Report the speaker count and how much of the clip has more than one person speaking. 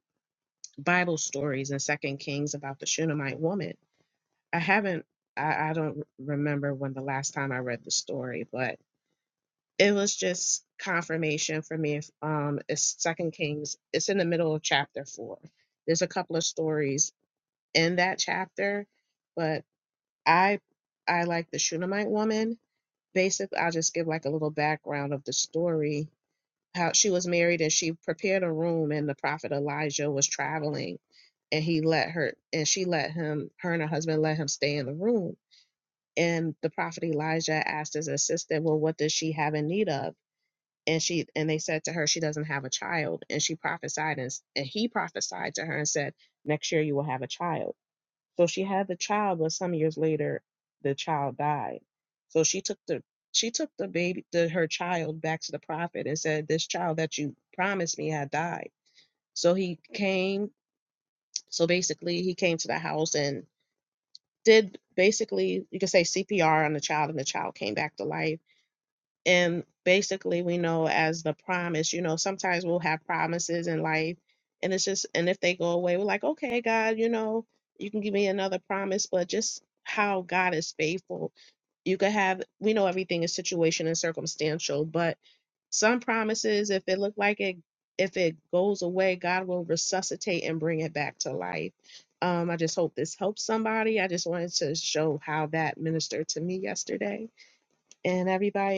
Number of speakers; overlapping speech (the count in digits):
1, no overlap